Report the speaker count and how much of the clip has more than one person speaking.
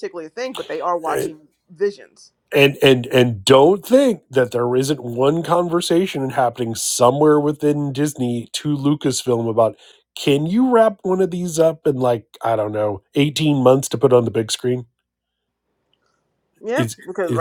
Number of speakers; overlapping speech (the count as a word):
two, about 3%